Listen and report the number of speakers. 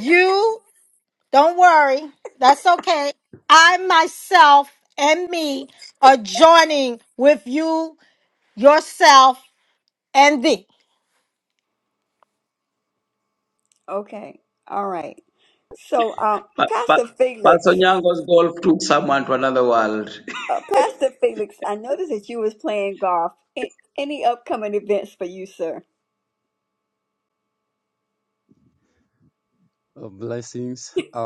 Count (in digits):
4